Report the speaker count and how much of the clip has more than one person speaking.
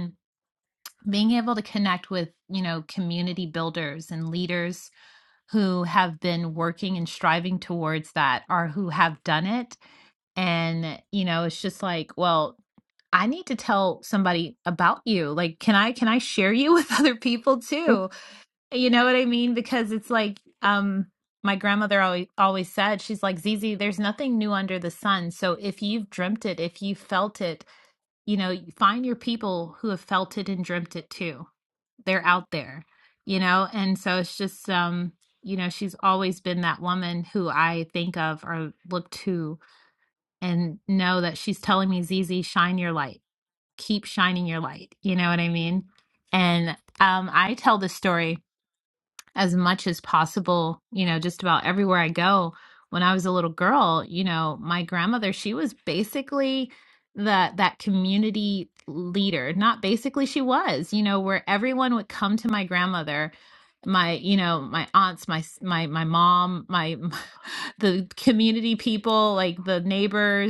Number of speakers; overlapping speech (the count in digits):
1, no overlap